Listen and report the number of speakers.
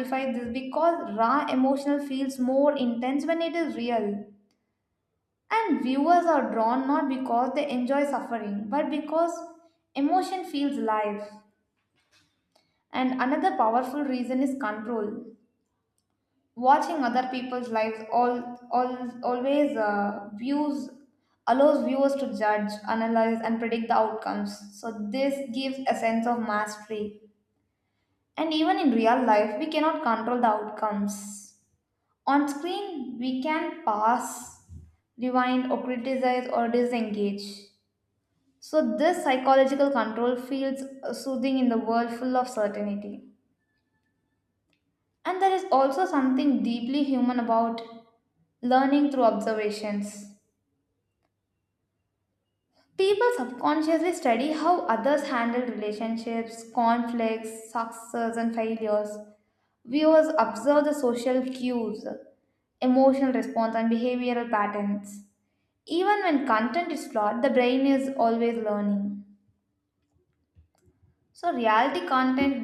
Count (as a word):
one